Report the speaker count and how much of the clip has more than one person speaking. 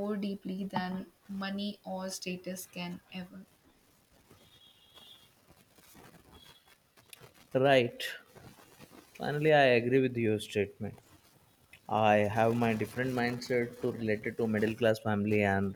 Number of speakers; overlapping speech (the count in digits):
2, no overlap